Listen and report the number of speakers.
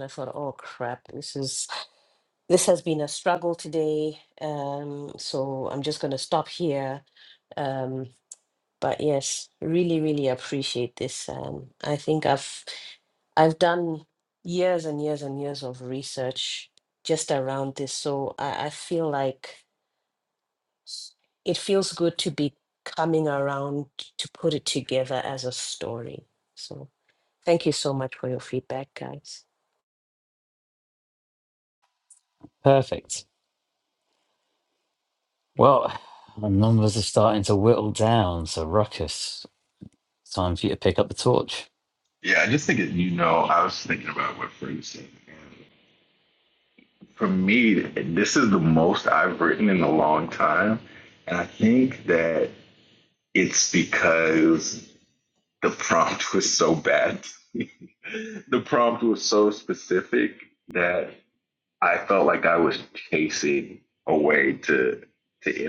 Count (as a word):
three